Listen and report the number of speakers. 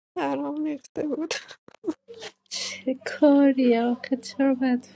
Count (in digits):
2